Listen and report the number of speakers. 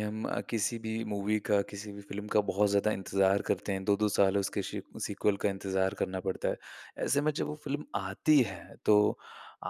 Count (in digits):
1